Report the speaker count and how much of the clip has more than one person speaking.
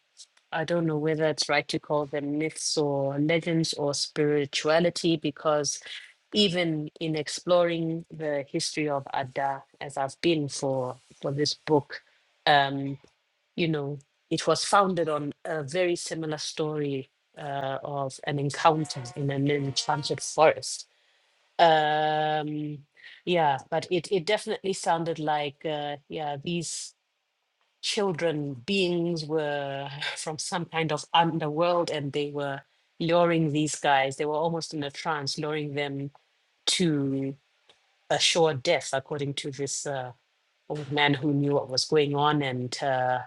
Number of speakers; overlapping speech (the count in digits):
1, no overlap